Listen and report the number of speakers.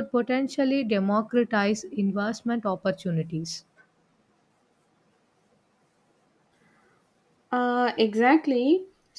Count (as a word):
two